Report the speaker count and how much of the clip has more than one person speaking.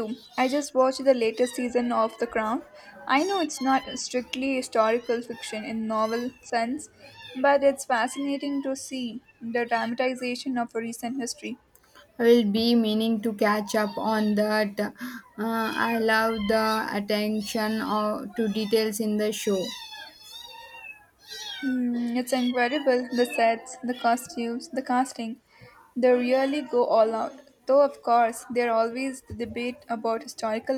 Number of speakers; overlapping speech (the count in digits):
2, no overlap